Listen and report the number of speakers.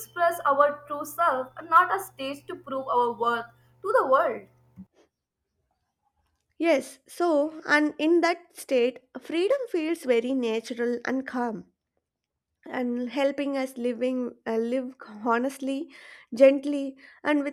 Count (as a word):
two